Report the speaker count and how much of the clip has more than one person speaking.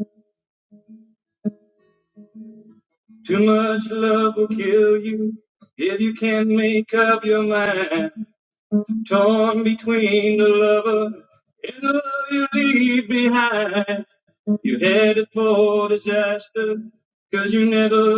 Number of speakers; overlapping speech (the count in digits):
1, no overlap